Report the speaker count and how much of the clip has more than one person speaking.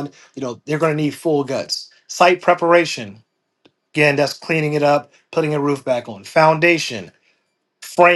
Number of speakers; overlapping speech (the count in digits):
1, no overlap